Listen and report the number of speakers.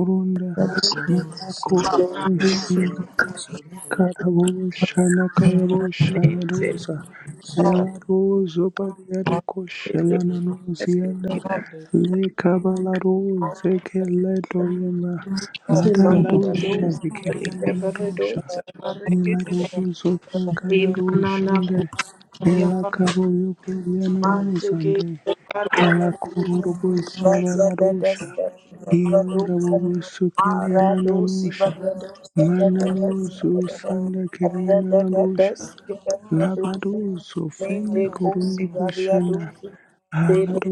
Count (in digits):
3